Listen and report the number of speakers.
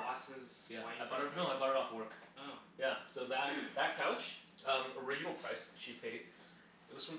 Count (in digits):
2